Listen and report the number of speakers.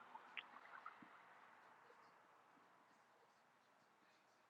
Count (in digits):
0